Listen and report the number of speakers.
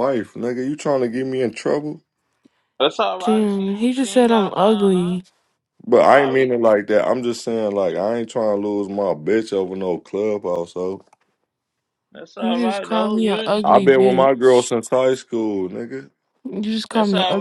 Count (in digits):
3